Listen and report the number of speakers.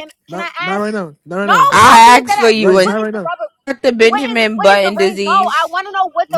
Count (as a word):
three